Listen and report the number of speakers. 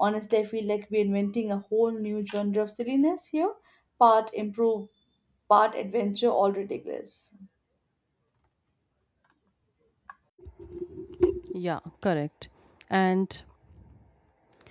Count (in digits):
2